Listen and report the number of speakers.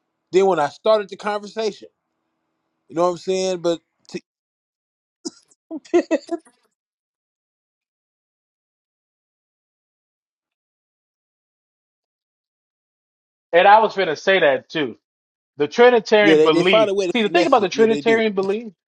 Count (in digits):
2